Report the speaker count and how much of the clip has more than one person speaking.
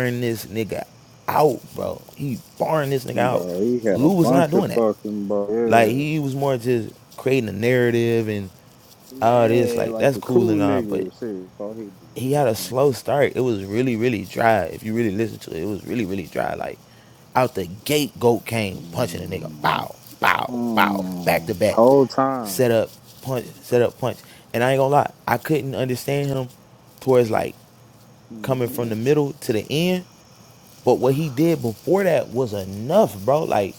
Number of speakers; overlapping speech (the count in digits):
2, about 20%